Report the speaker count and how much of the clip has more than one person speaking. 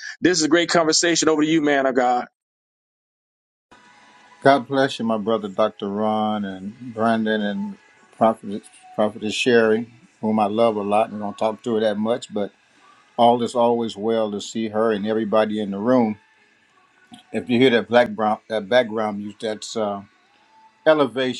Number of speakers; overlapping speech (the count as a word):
two, no overlap